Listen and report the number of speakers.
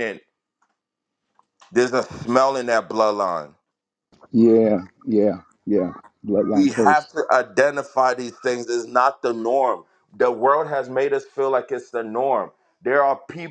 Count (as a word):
two